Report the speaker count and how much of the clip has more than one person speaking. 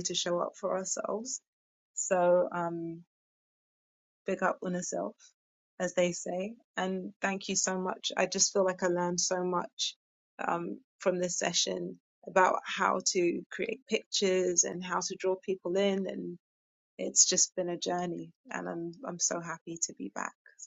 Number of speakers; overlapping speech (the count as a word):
one, no overlap